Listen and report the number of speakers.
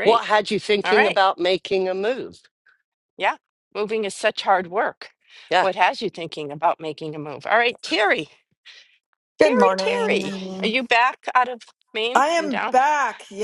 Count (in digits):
3